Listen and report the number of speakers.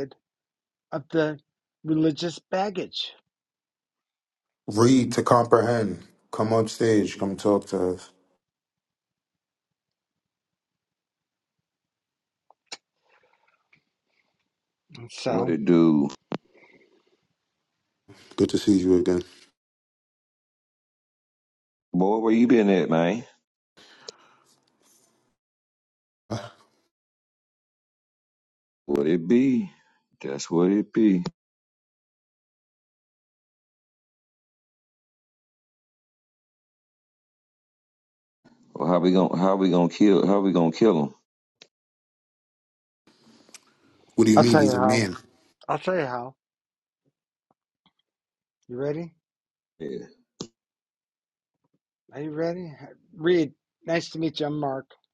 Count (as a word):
three